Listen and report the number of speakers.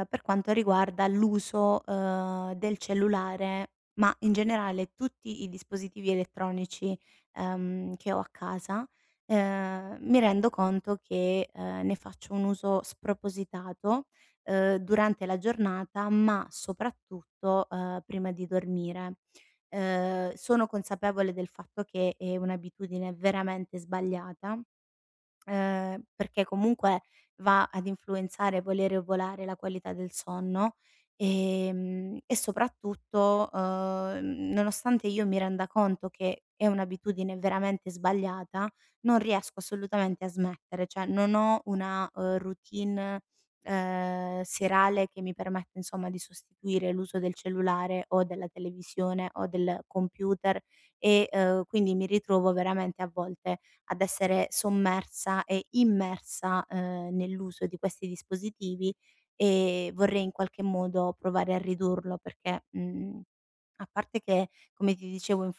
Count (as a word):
one